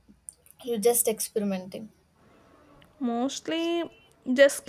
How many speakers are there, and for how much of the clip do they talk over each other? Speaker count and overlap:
2, no overlap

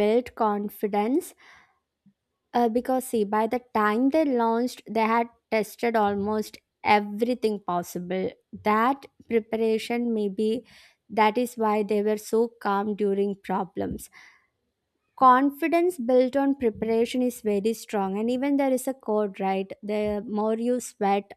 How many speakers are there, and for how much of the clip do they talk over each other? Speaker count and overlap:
1, no overlap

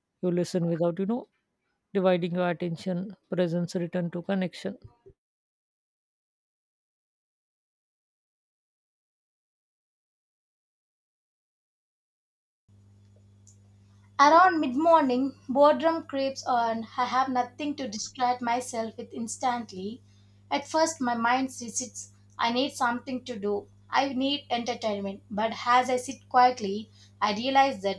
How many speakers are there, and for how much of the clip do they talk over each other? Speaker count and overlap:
2, no overlap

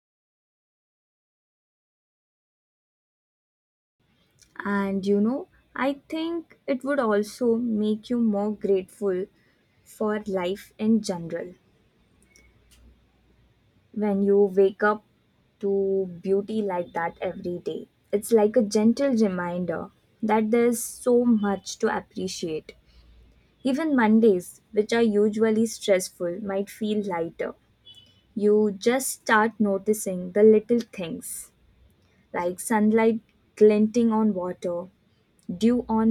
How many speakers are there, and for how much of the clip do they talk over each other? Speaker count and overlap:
1, no overlap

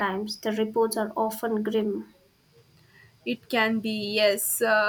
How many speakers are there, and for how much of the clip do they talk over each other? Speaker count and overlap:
2, no overlap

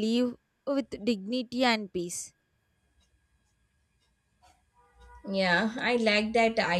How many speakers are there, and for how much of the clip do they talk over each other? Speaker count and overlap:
2, no overlap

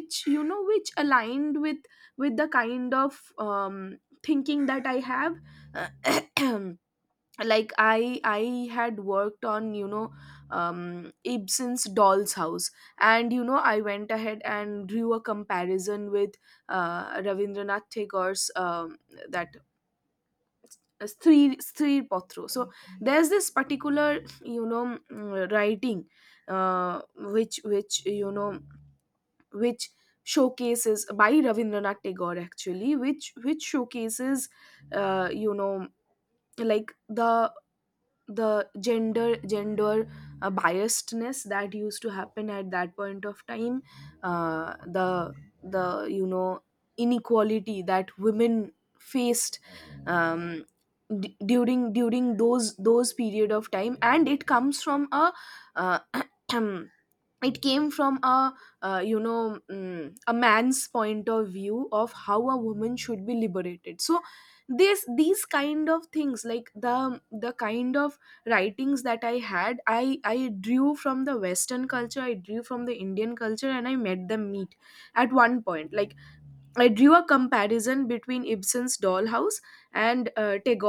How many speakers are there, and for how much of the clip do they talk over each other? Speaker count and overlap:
1, no overlap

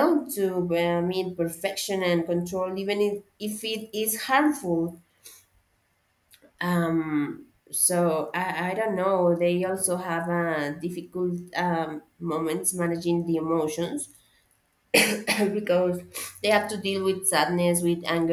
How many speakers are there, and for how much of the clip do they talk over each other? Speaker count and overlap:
1, no overlap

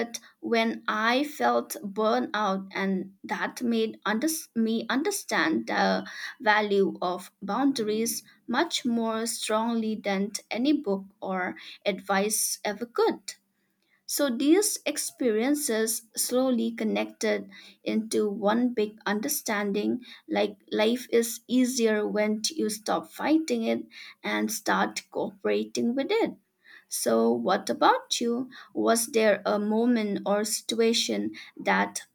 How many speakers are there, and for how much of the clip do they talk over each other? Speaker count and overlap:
1, no overlap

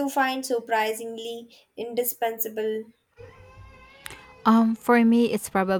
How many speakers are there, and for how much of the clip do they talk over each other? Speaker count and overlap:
2, no overlap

